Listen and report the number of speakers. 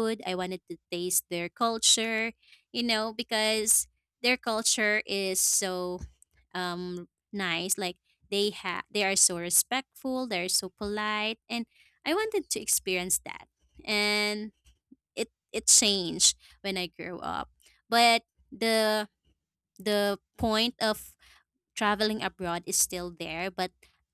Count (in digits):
1